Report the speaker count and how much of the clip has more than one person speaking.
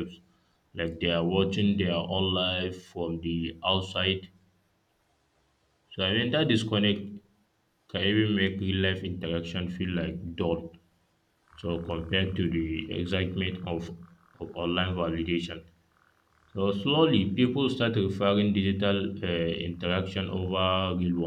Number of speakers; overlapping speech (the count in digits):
1, no overlap